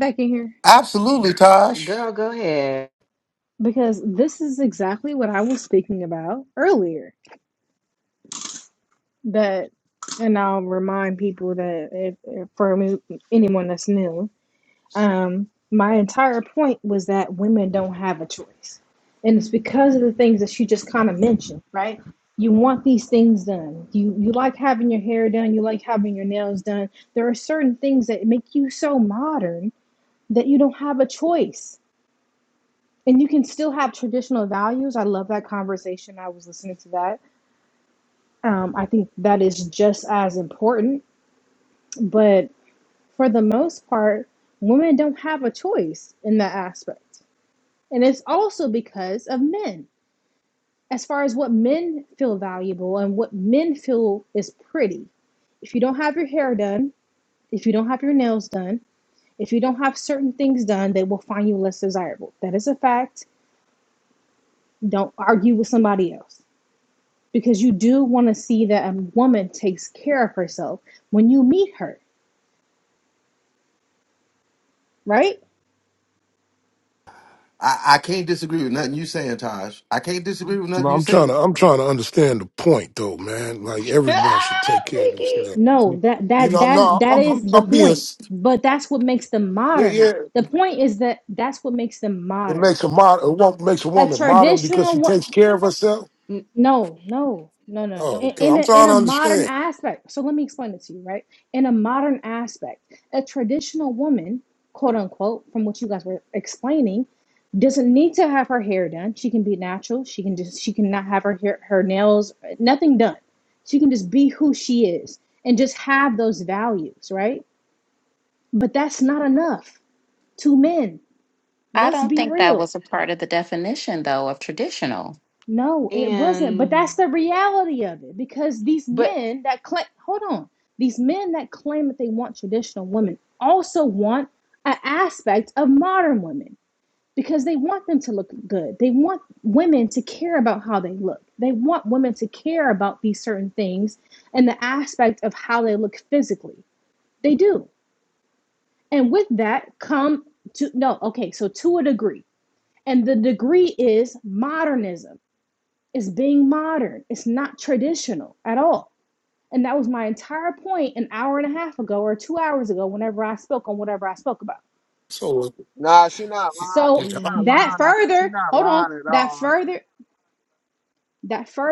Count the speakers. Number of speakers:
six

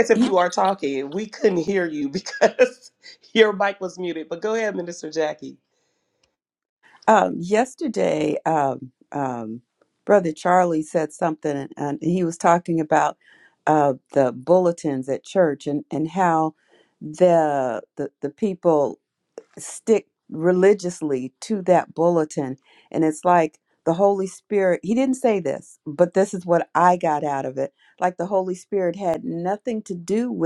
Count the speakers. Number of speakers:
two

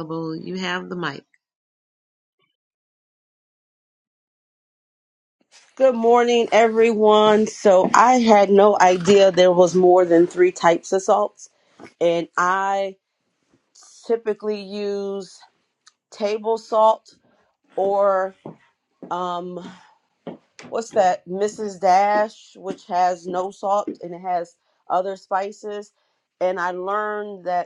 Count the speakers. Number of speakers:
two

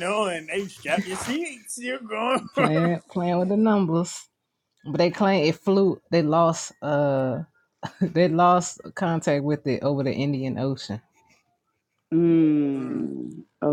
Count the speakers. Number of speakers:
three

